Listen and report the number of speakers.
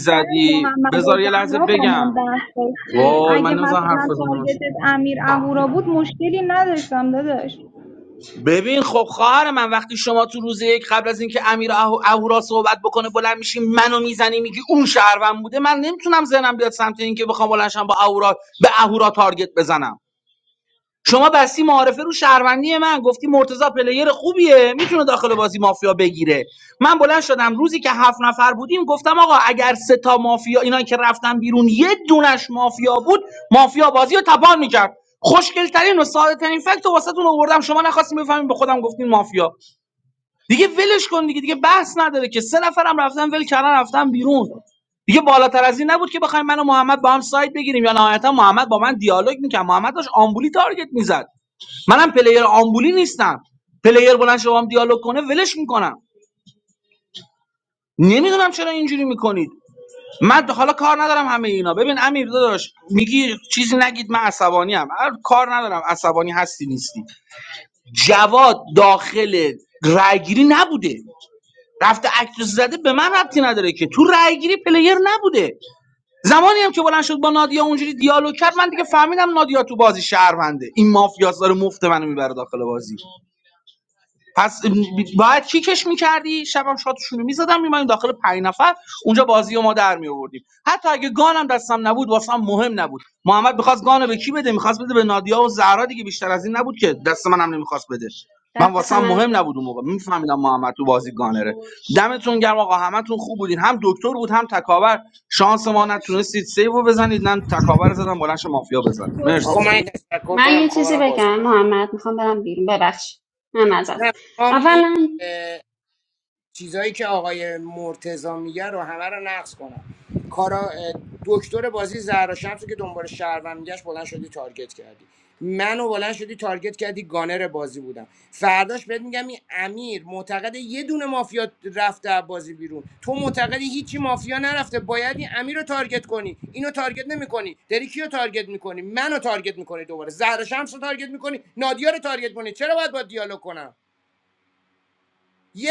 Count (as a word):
four